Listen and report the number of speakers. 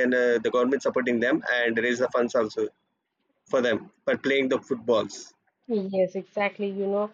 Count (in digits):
2